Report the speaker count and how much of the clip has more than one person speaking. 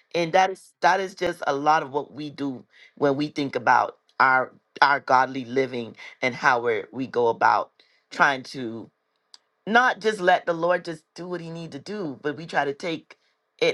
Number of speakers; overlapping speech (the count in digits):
1, no overlap